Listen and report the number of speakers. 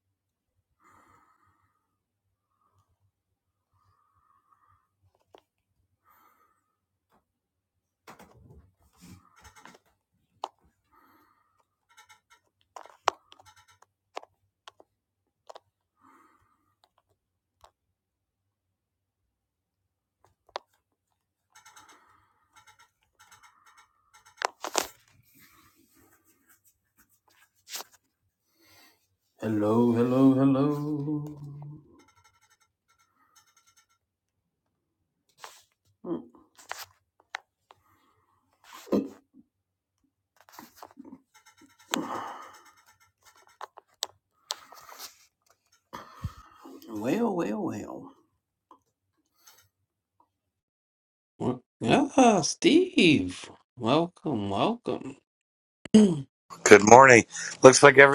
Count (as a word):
two